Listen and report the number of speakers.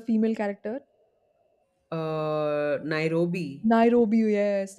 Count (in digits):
2